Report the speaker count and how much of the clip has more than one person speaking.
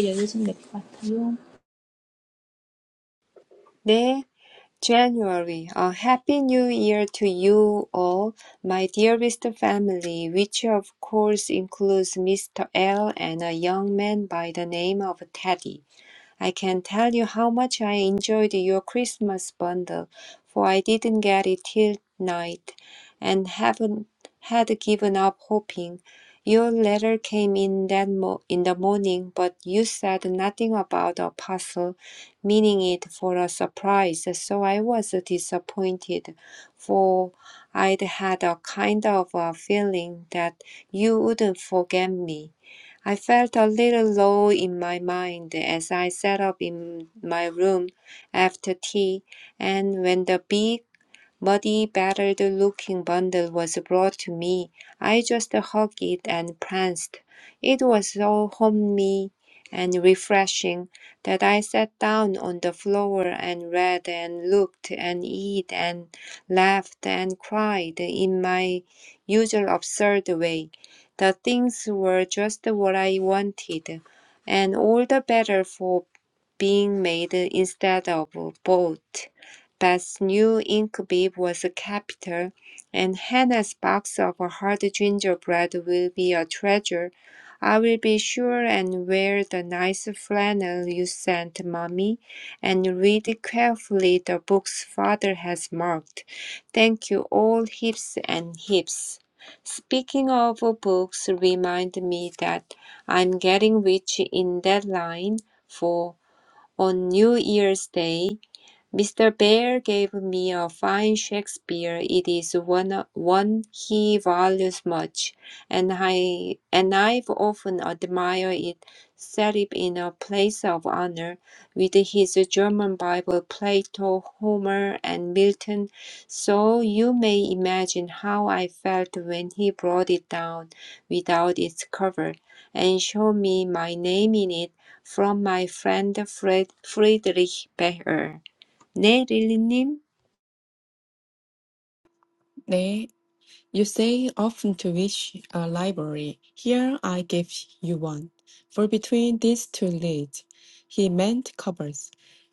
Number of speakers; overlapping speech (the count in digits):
3, no overlap